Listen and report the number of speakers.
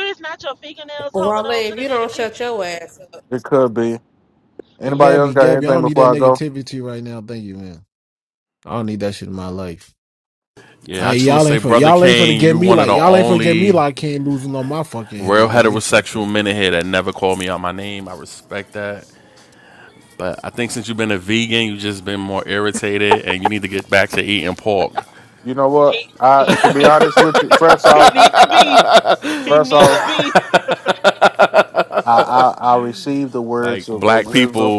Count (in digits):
5